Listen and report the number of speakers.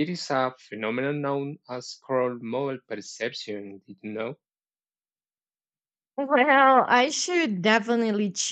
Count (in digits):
2